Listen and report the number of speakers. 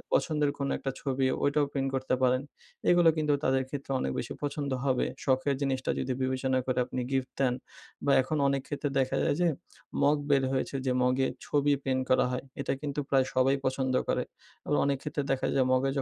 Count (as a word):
one